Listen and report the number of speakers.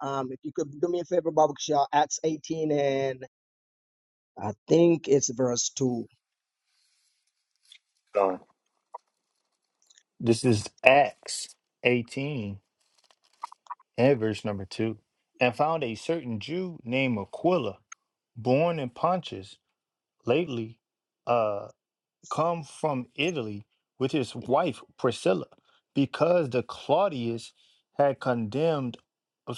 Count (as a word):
two